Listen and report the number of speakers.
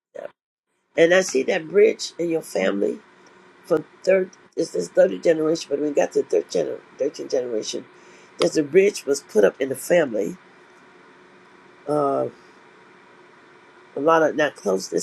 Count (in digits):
1